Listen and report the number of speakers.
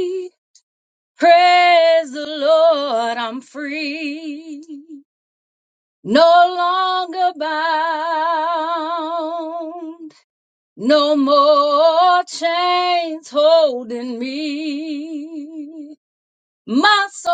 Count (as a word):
one